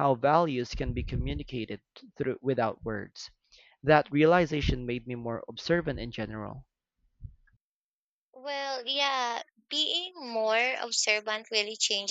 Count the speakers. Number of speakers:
2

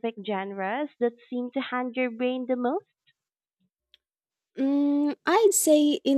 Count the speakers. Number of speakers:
2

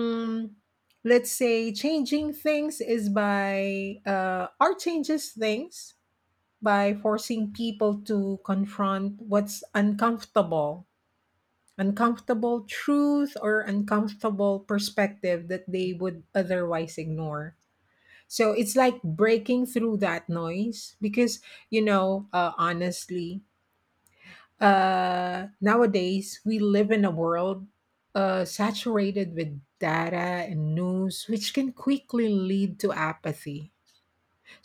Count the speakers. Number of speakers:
1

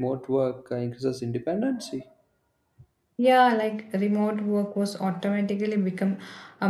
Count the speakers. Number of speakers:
2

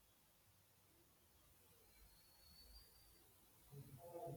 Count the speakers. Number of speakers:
0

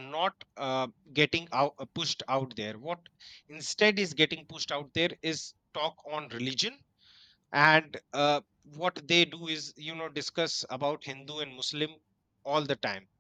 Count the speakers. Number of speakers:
1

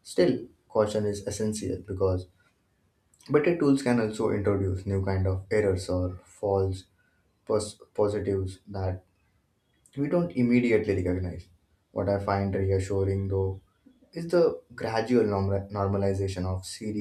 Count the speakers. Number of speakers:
1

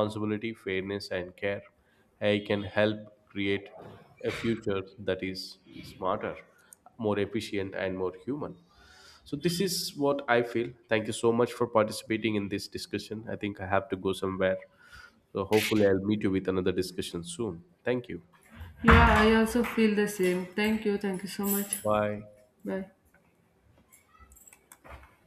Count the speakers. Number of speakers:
2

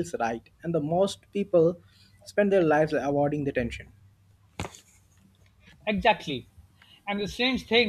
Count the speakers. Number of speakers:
2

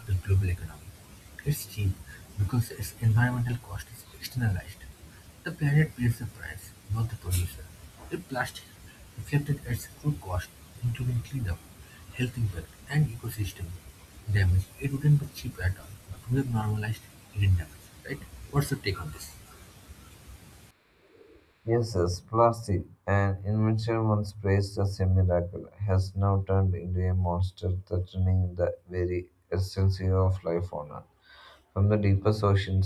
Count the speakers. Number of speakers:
2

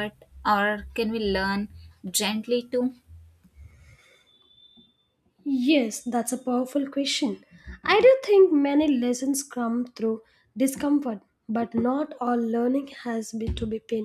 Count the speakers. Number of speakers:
2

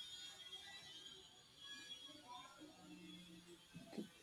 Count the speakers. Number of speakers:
0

